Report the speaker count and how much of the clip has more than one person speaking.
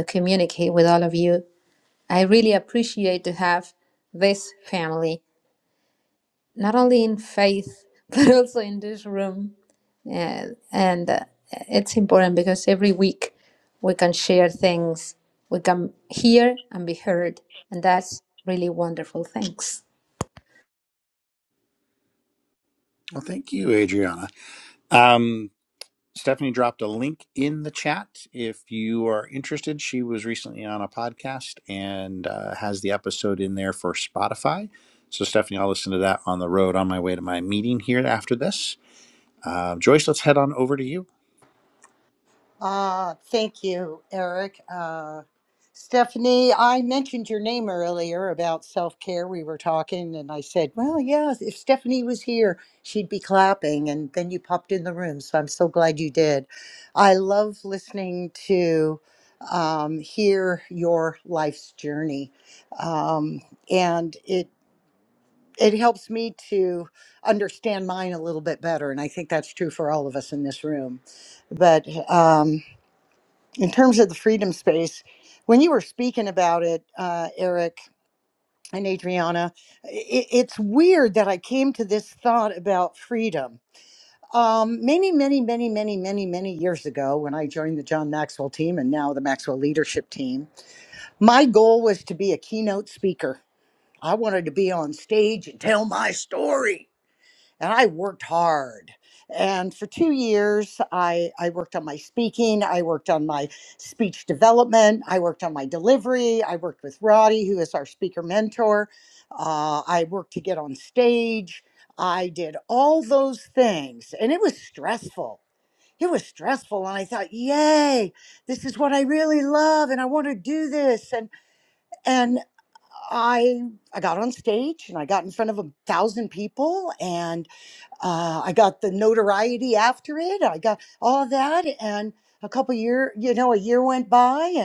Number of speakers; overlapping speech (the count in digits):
3, no overlap